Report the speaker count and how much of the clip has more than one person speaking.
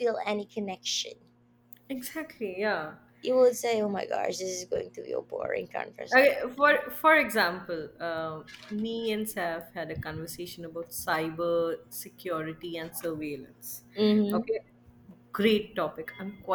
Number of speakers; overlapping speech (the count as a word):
two, about 2%